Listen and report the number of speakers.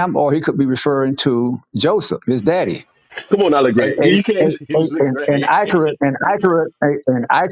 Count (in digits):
2